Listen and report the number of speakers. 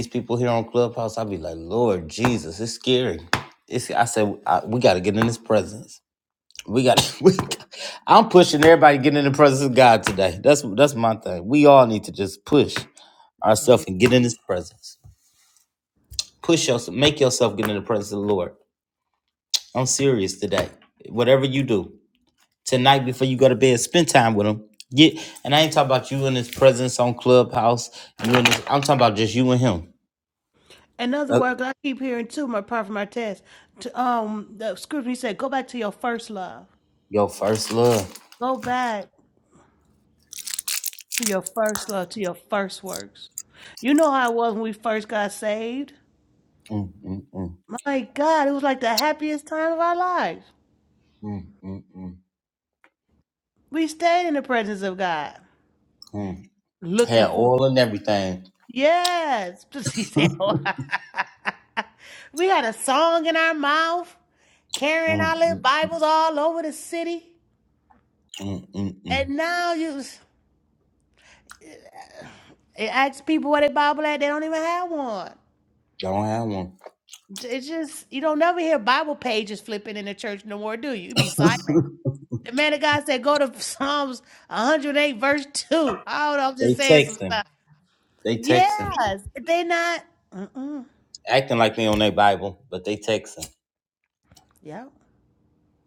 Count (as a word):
two